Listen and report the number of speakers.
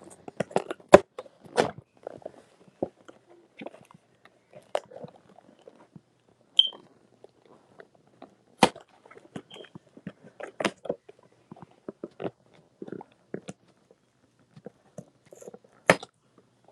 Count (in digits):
0